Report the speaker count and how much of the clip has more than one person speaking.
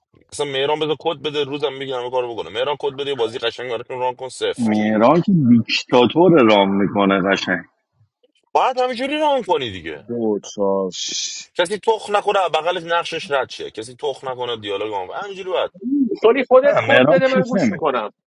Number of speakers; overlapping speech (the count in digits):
4, about 7%